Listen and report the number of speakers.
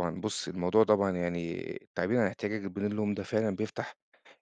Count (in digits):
1